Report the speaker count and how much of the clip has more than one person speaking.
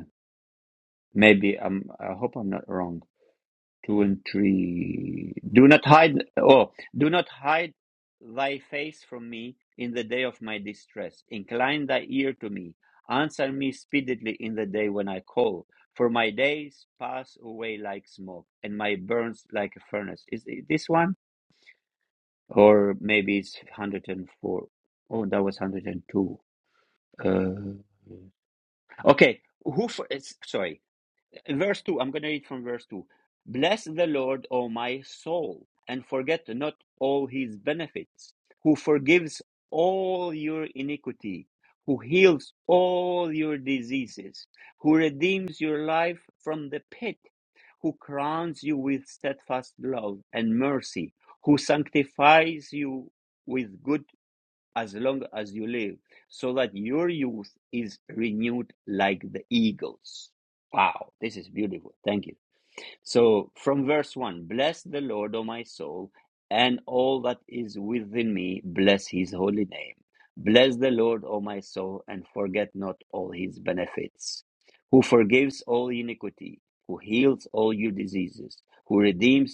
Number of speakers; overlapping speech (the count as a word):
one, no overlap